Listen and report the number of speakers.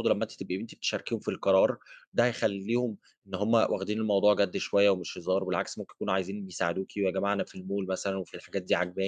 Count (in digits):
1